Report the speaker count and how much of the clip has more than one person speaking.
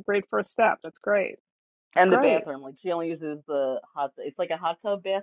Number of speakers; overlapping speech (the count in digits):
2, about 7%